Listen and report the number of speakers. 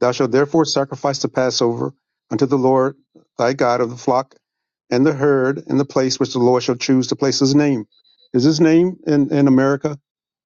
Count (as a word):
one